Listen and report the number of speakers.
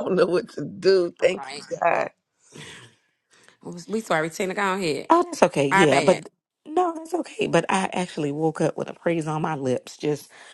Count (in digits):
3